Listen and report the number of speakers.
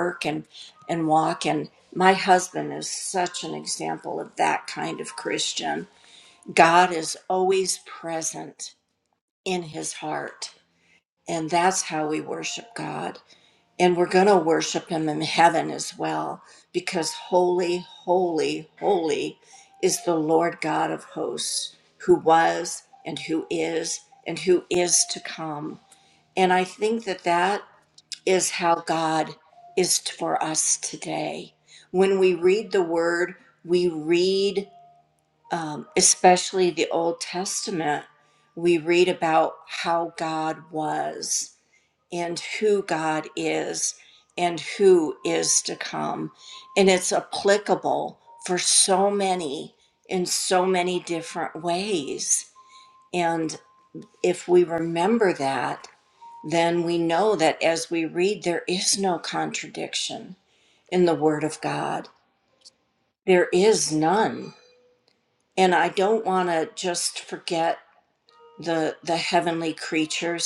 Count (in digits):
1